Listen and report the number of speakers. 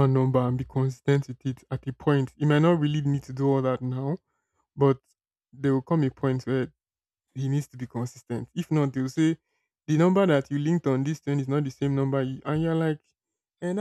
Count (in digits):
1